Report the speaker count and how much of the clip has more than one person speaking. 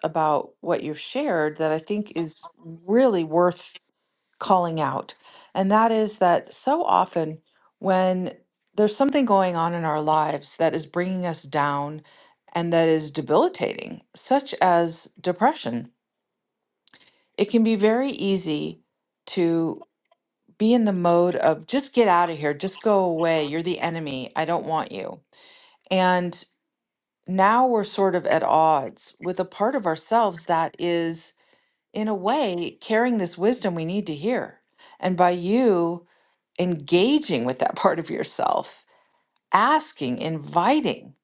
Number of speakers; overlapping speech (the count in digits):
1, no overlap